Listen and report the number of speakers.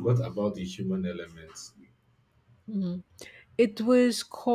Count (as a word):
two